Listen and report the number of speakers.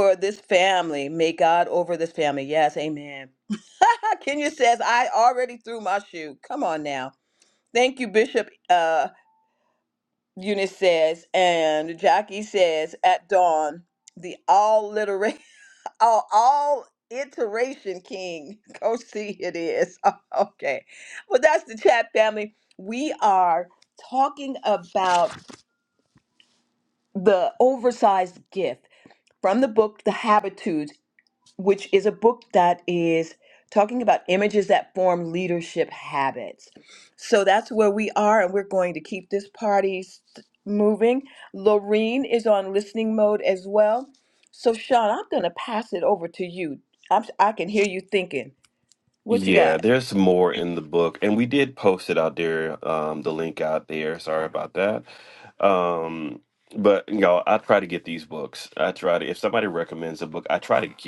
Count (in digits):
2